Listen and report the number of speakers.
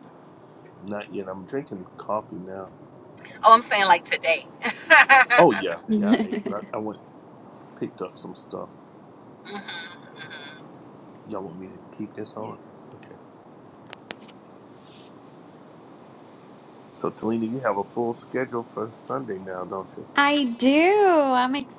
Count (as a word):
three